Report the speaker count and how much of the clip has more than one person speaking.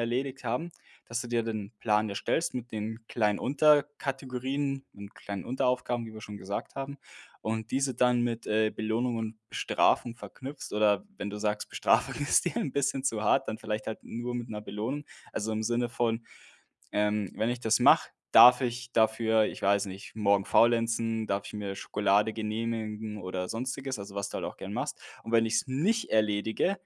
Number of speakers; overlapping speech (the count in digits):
1, no overlap